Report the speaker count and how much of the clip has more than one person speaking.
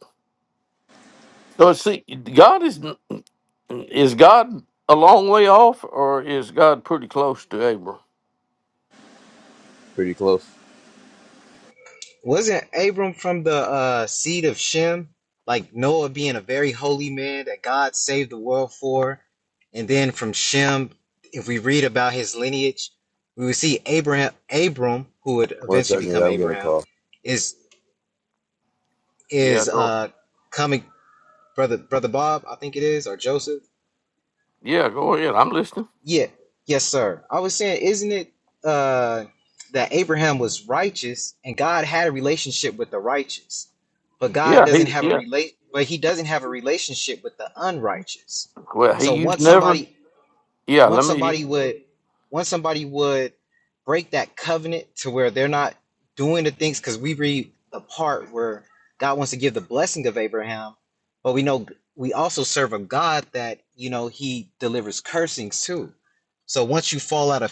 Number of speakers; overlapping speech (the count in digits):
3, about 5%